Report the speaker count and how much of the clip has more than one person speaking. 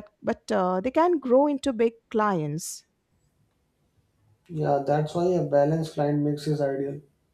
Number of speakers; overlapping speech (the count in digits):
2, no overlap